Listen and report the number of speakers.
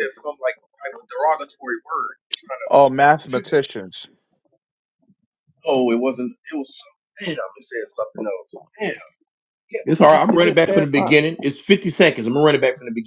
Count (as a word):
three